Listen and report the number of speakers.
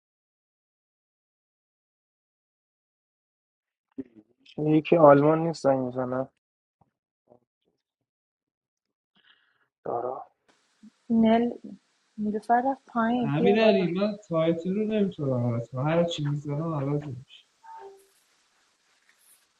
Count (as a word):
three